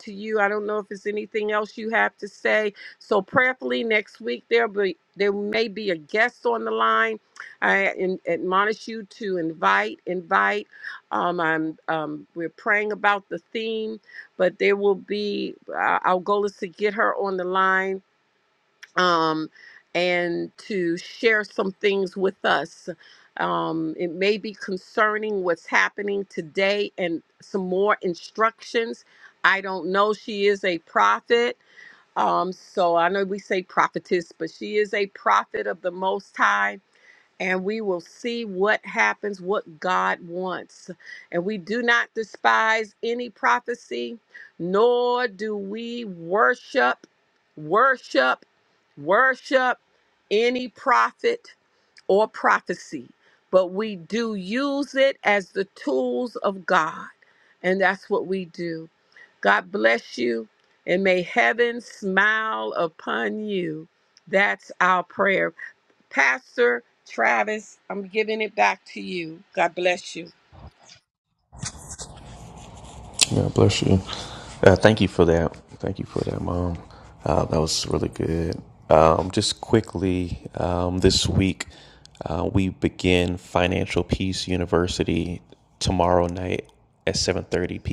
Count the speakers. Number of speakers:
2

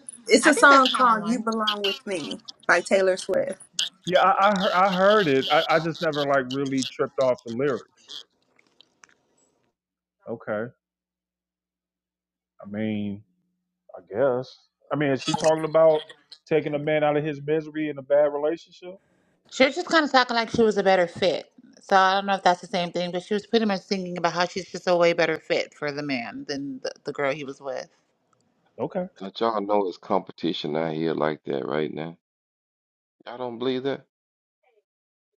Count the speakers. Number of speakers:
4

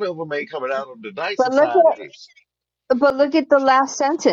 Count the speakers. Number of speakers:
2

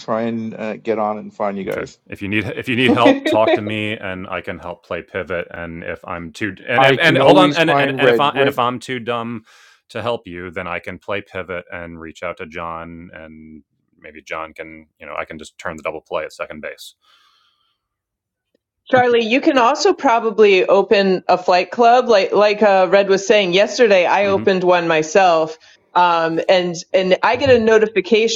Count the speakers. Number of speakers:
3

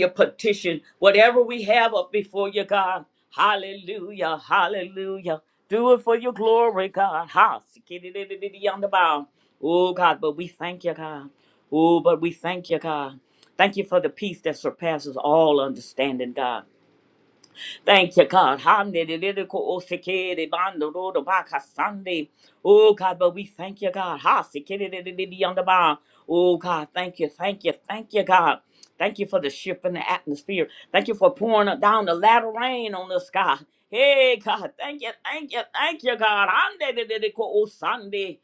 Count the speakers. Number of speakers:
1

